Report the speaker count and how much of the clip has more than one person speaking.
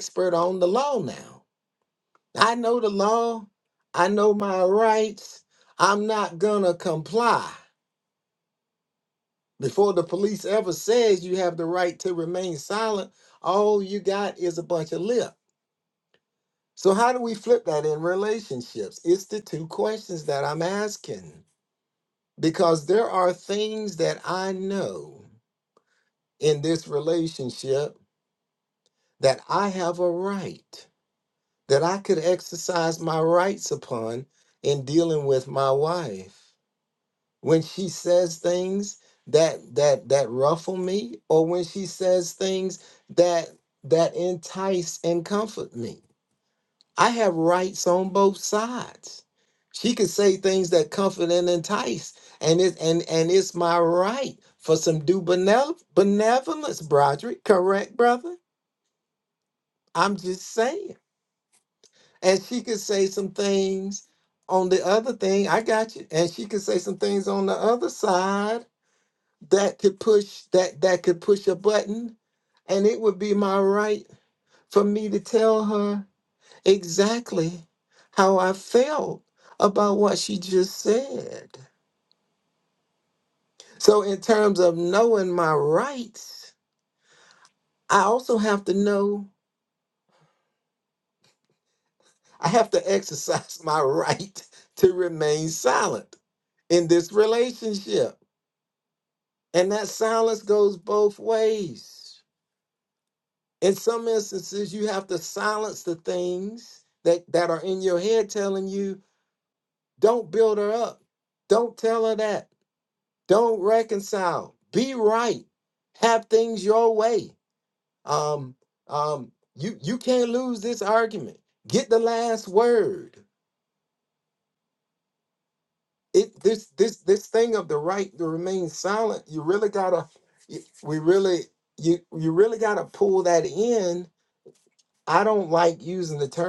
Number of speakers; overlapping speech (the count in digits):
1, no overlap